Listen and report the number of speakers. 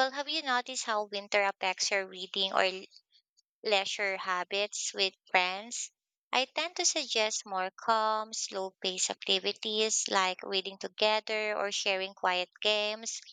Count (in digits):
1